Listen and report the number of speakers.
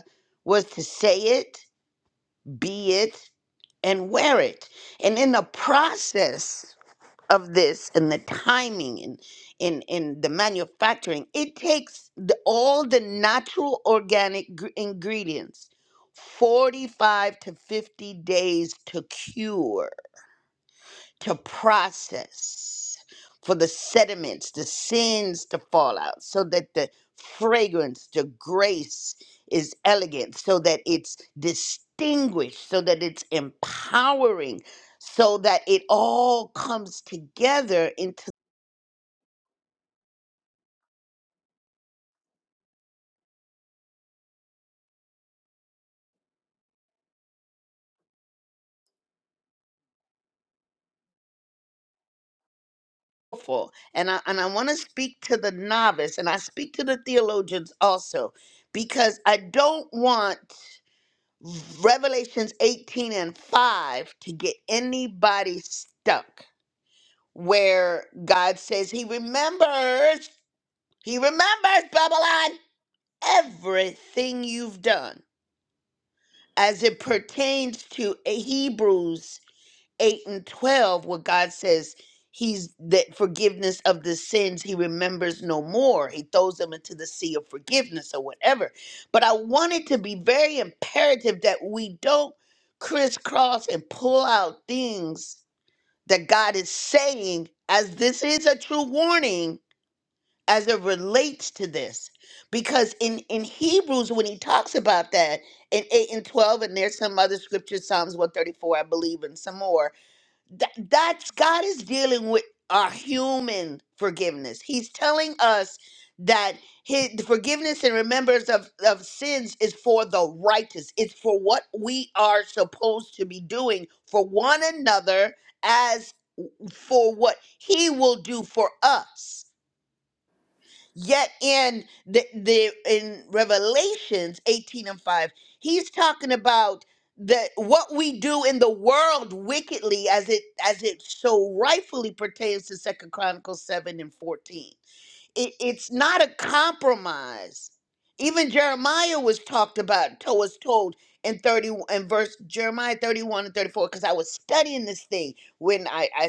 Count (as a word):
one